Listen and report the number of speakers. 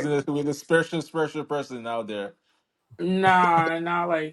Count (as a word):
two